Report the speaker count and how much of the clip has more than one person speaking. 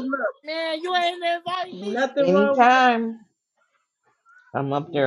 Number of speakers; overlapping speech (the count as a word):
three, about 20%